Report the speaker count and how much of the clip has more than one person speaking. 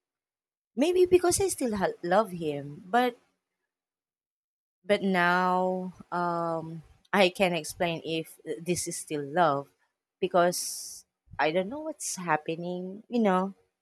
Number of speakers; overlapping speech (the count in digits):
1, no overlap